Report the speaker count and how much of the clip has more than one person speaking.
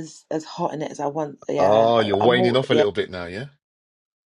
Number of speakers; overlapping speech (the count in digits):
2, about 30%